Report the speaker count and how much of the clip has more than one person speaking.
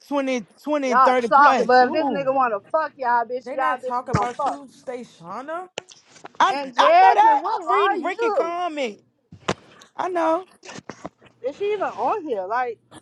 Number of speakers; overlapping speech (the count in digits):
3, about 35%